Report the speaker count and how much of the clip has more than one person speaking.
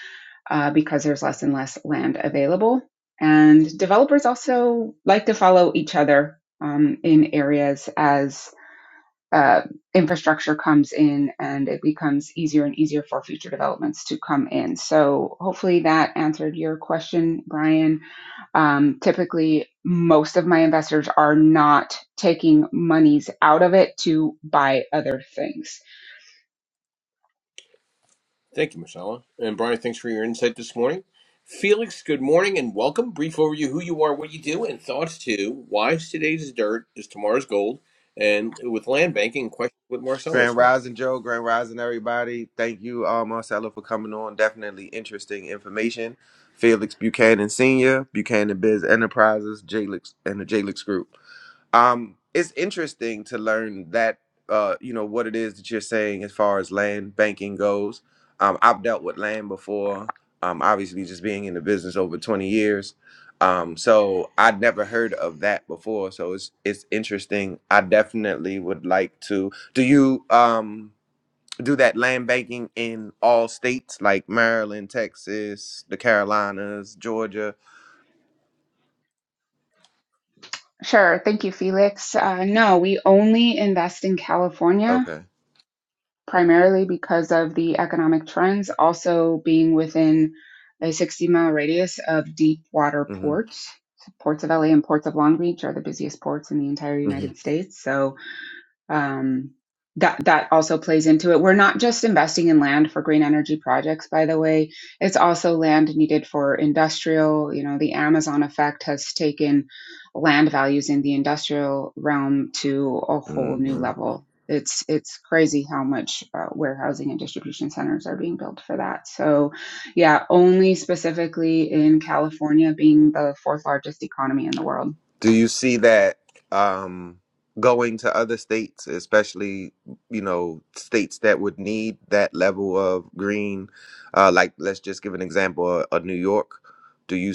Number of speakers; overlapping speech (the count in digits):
3, about 1%